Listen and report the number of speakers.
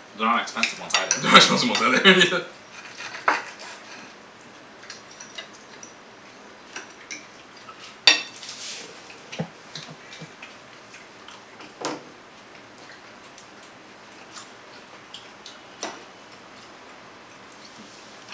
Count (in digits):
2